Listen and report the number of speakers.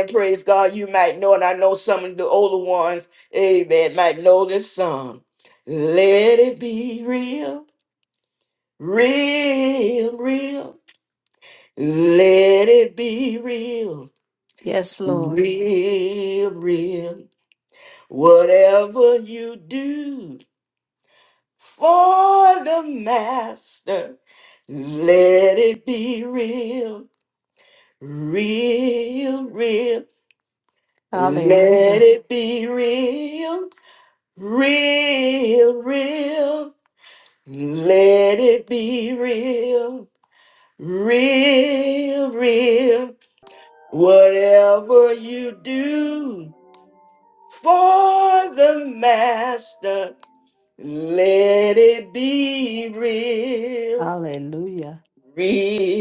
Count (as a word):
two